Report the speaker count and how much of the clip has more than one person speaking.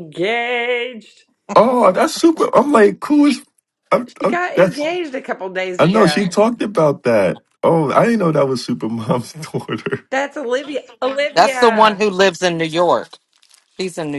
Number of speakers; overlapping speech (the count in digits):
3, about 13%